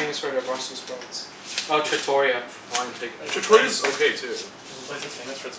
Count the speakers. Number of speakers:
3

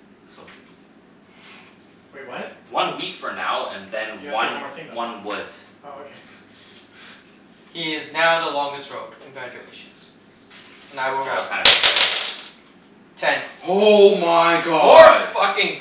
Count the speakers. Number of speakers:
4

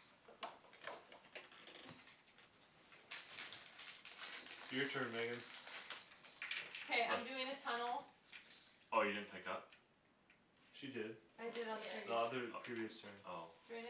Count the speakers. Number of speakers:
3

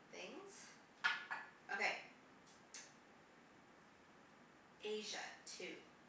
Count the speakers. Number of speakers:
1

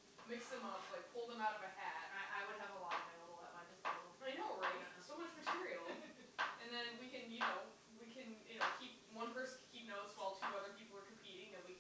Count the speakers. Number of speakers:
2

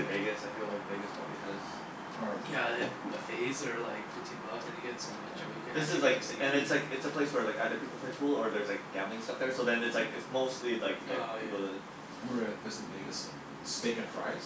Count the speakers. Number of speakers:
3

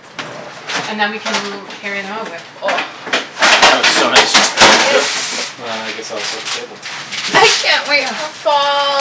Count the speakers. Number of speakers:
4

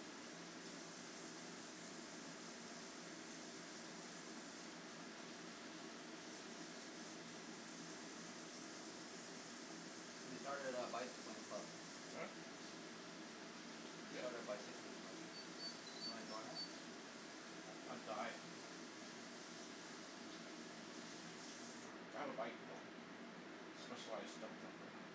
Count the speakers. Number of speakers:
2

